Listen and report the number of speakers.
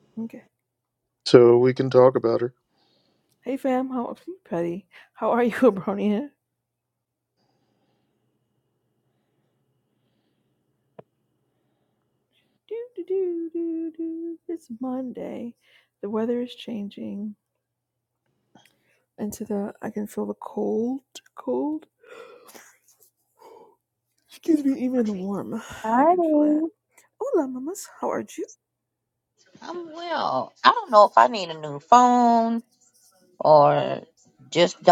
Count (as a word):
three